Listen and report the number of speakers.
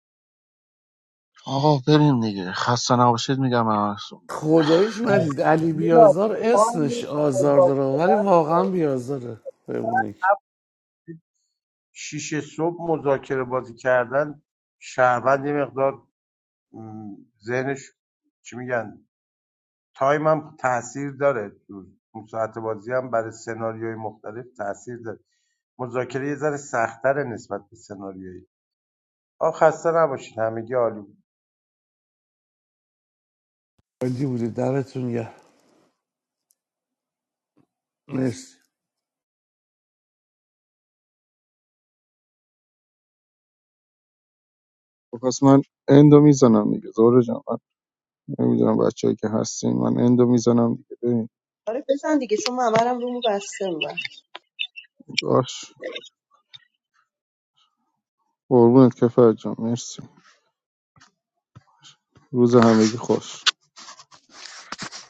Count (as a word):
four